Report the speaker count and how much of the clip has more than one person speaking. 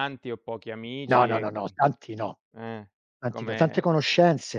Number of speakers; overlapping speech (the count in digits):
2, about 22%